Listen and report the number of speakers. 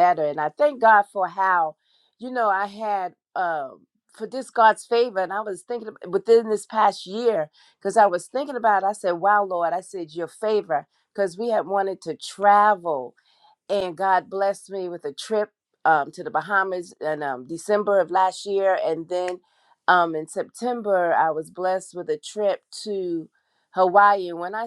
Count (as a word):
one